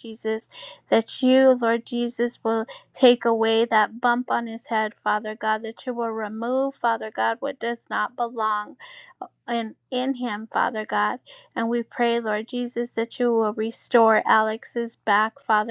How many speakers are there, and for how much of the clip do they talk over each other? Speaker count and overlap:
1, no overlap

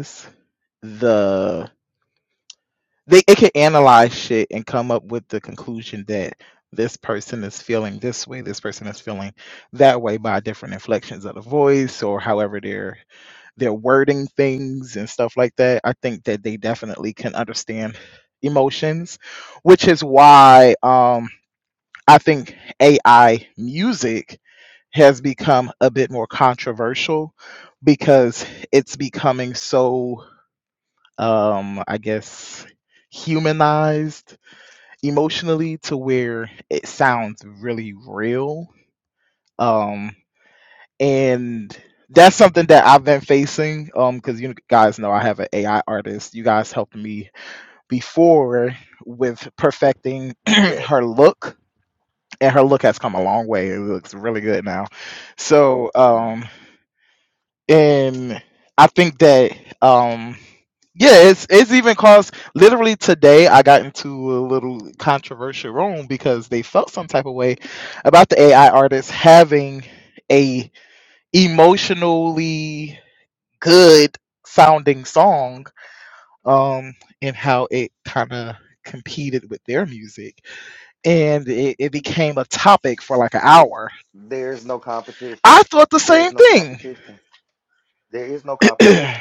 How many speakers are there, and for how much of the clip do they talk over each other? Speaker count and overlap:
2, about 1%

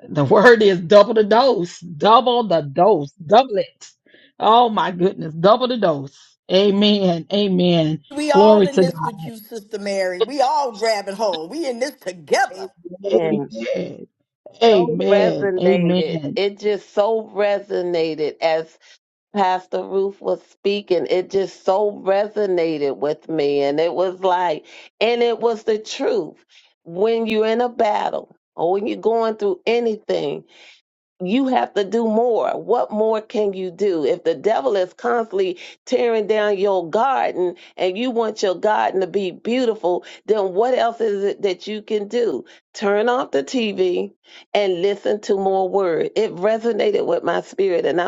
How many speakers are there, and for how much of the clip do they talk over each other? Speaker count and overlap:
3, about 5%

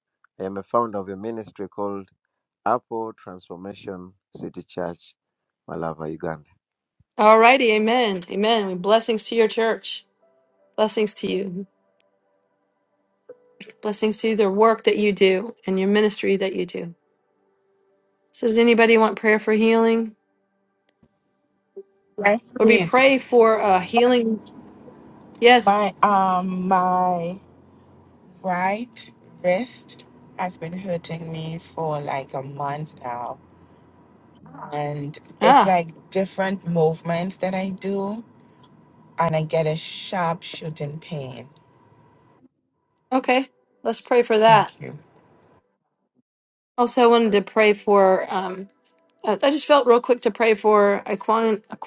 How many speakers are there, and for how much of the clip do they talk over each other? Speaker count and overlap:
3, about 2%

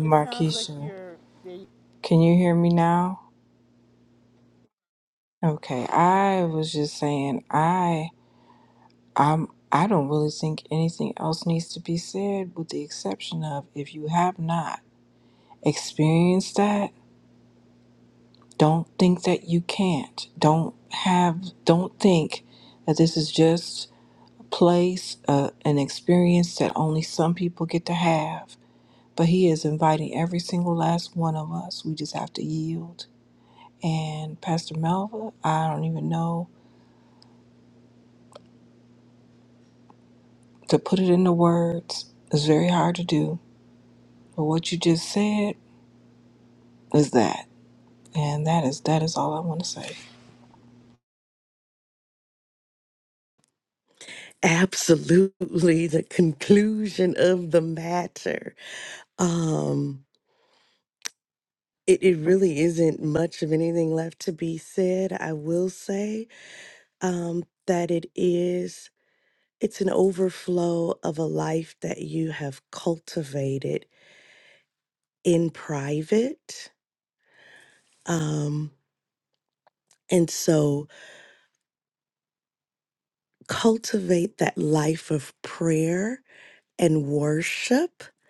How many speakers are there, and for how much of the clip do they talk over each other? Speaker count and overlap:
3, about 1%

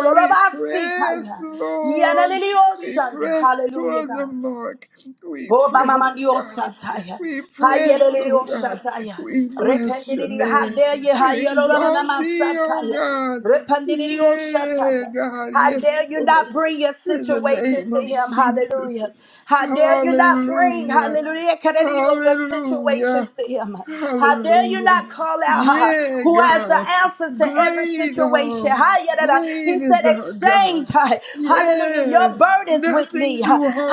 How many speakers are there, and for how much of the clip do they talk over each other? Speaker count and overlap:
2, about 63%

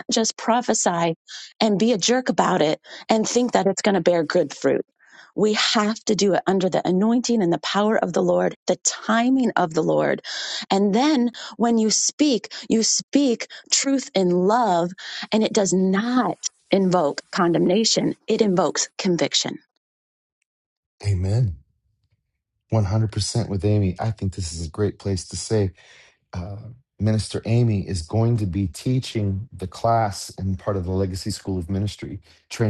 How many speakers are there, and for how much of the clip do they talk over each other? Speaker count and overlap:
2, no overlap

